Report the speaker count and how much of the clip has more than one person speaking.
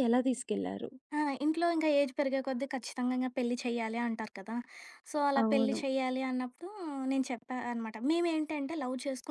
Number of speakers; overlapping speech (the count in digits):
2, about 5%